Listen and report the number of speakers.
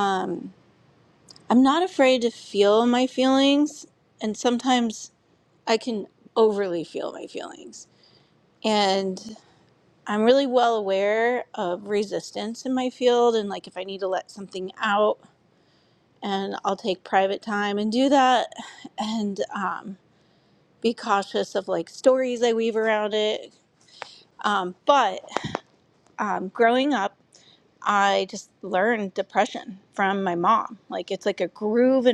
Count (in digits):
1